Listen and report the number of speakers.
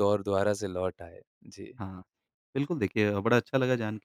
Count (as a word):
two